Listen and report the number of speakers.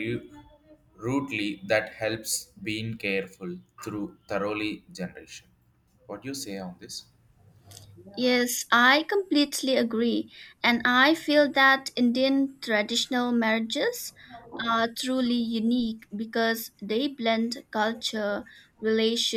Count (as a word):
two